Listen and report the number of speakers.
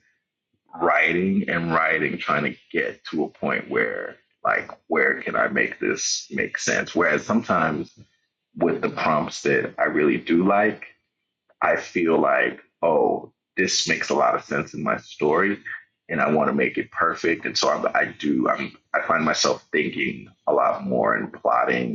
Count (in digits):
1